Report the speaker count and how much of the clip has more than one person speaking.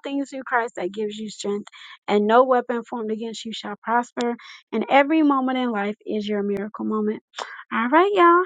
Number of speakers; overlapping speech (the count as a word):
one, no overlap